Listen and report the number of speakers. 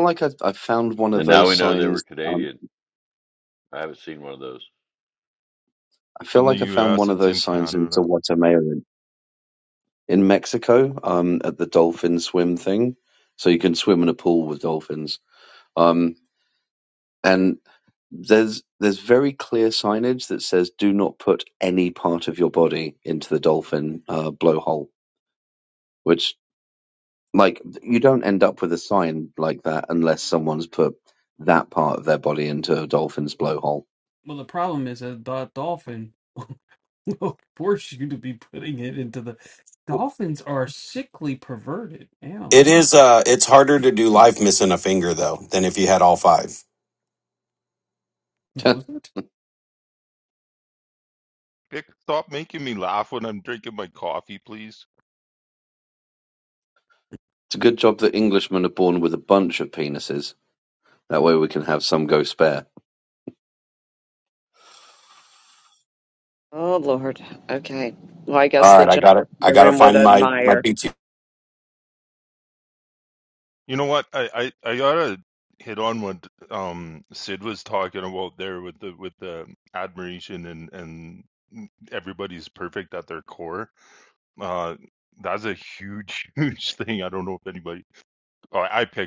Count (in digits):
6